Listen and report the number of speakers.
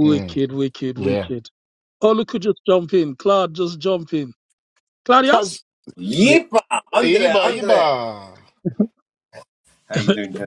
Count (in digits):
3